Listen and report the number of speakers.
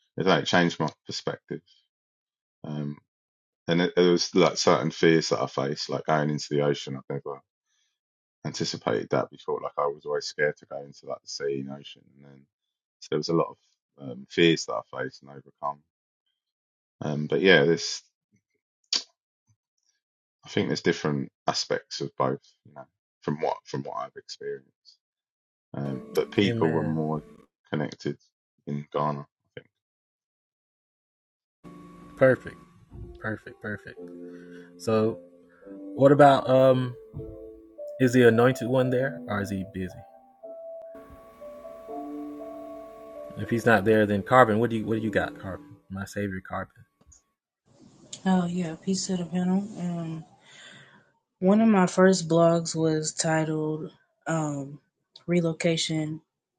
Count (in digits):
3